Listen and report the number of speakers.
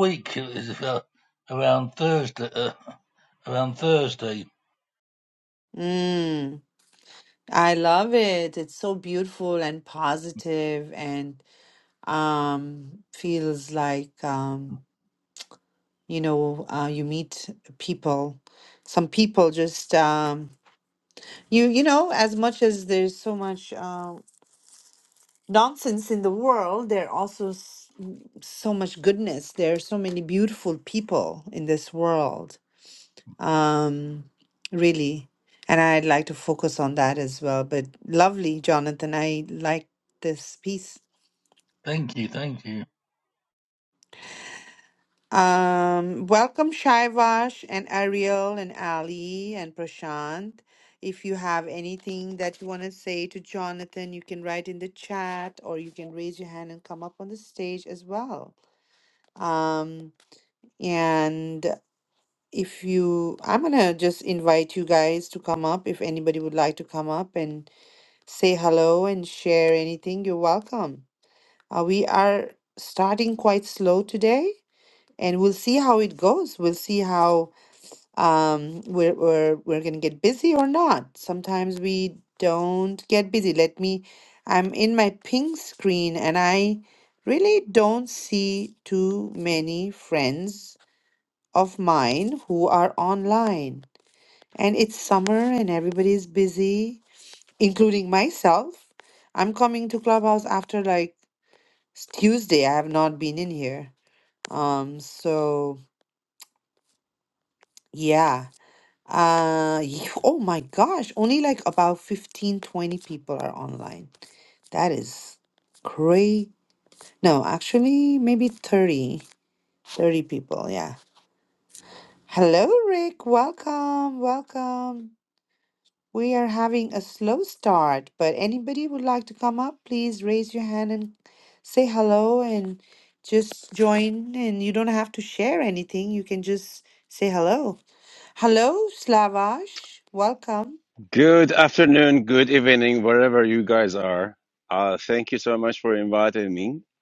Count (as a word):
three